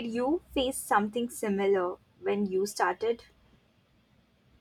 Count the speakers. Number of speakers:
1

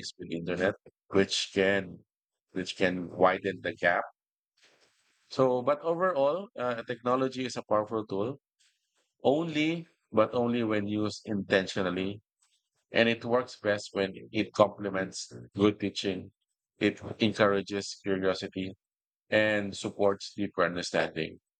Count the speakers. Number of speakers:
1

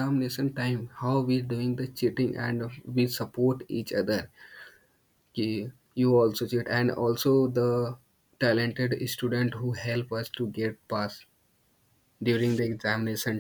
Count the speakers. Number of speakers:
1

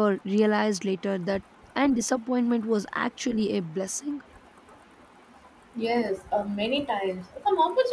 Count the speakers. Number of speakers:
2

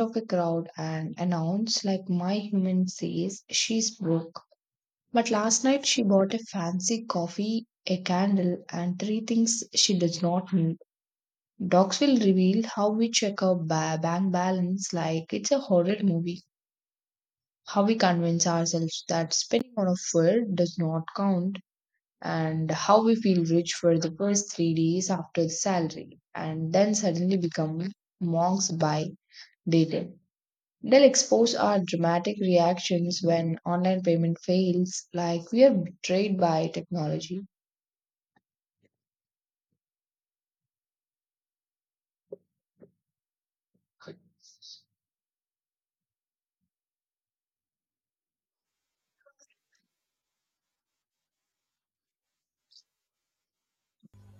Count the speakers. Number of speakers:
1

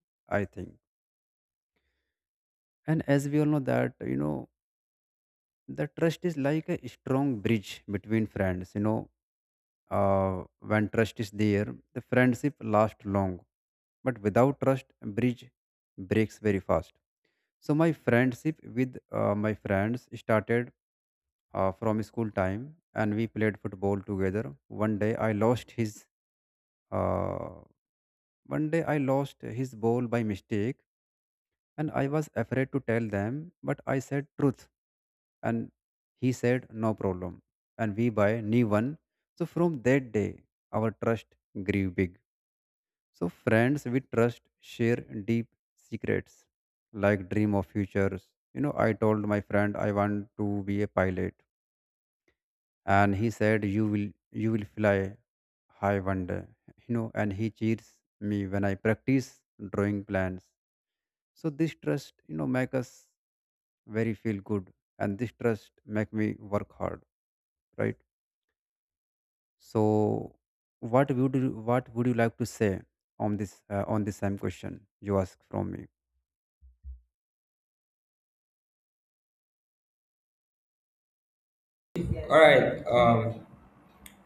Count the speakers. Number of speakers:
2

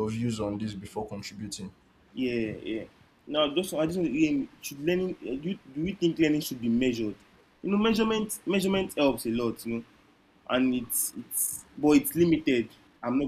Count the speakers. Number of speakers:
2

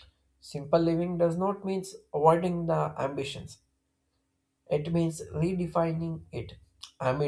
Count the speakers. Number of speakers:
1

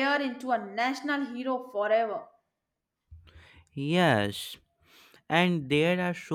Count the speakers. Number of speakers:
2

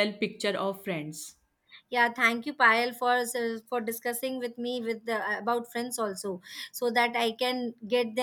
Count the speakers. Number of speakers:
2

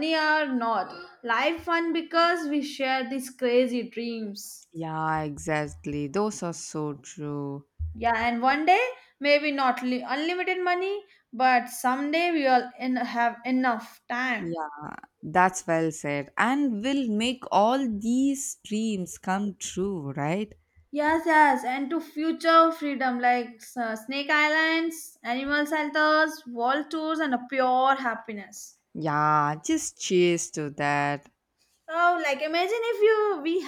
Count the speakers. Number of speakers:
2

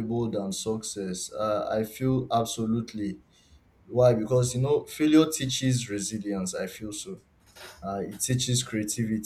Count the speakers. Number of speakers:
1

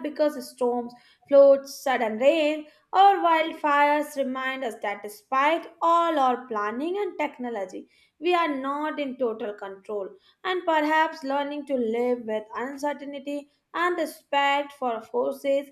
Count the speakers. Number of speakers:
1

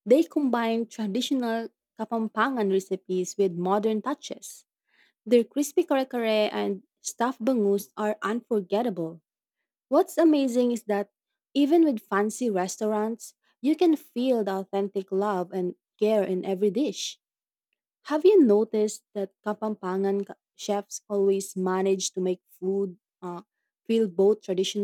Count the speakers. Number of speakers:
1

